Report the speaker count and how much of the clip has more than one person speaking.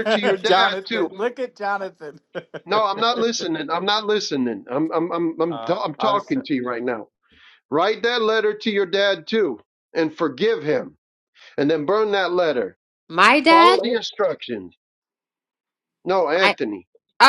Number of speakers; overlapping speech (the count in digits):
3, about 13%